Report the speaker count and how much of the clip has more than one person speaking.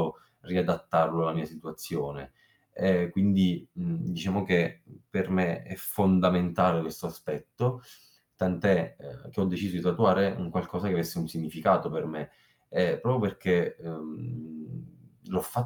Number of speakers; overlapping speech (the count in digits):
1, no overlap